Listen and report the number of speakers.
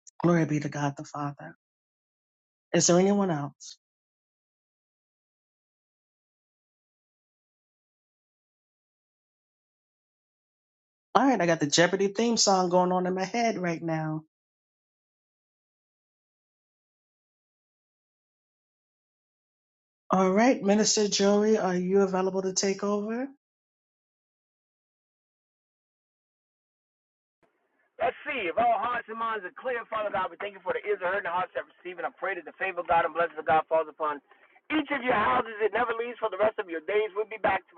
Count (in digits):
2